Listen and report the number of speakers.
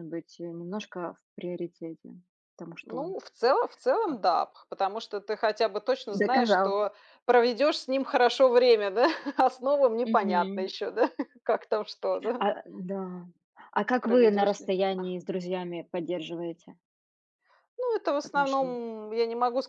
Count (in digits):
2